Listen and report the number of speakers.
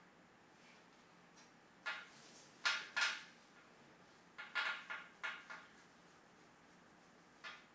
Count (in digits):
0